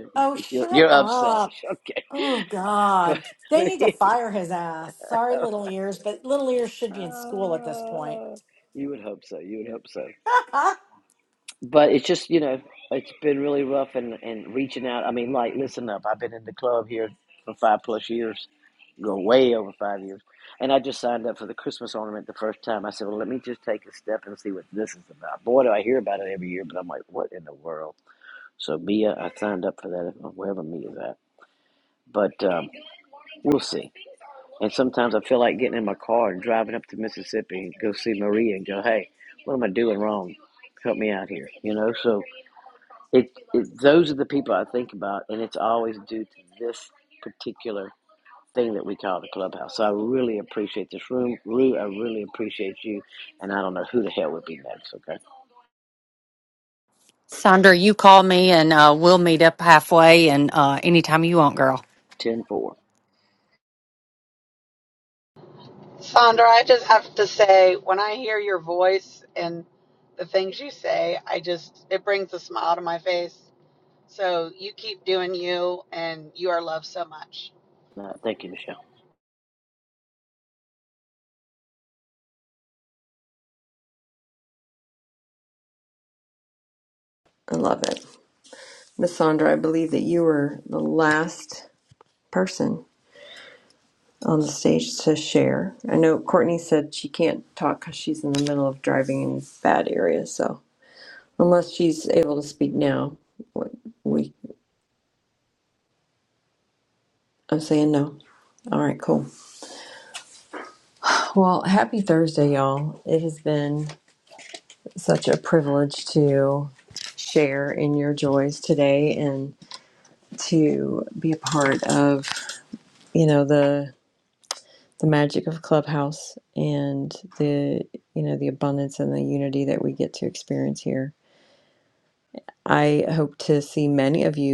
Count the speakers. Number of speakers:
5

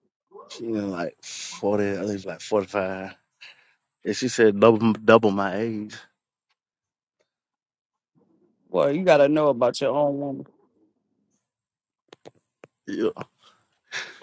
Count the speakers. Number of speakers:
2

